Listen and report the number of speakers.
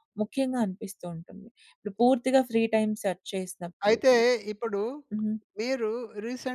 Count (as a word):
two